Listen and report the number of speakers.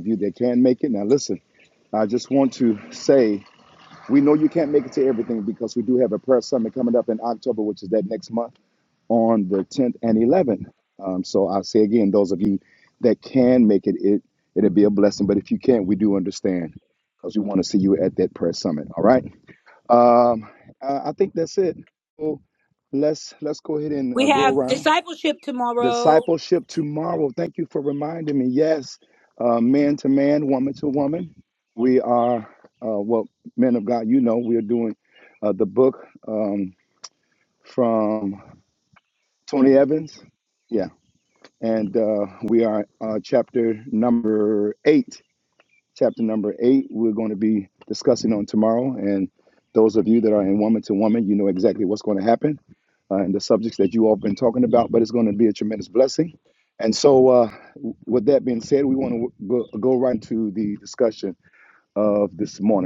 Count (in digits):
2